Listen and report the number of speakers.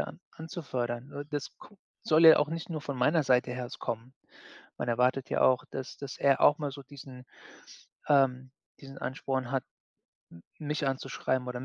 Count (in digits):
1